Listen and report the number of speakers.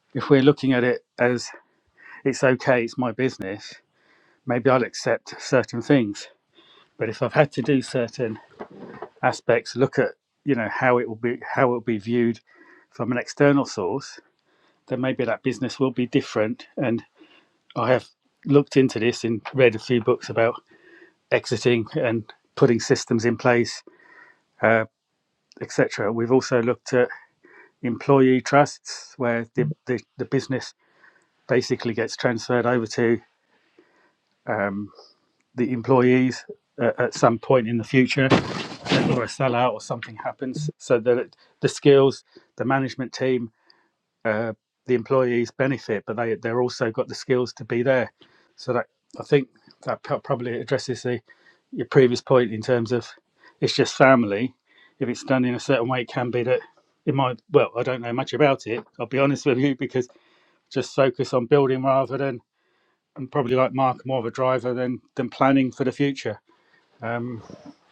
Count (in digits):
1